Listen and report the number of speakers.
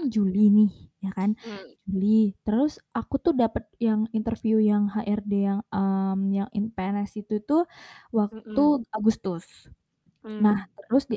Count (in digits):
2